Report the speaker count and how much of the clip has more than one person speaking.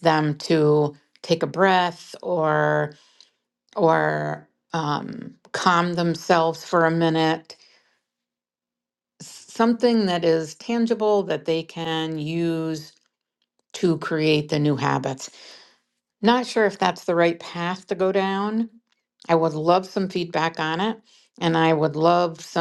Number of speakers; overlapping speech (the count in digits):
1, no overlap